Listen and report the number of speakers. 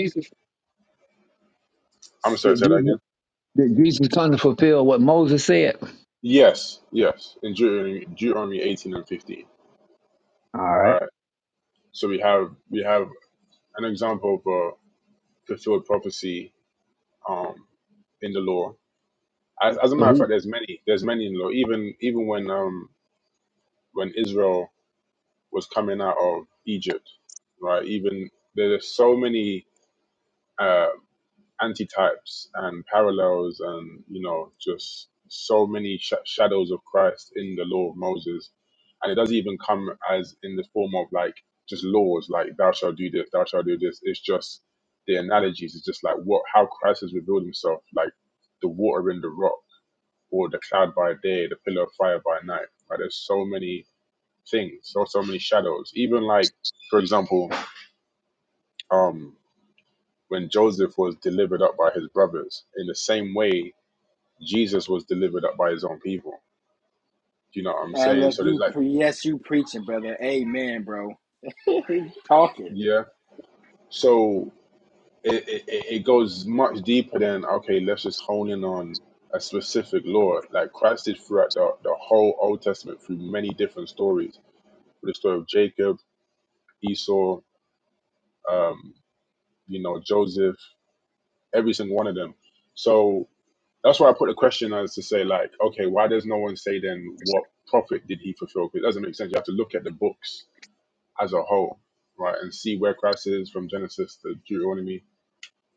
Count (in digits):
3